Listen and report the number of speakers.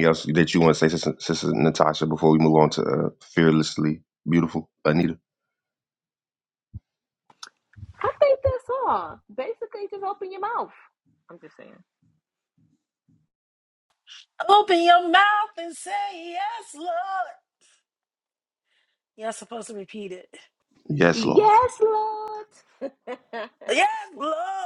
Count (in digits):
3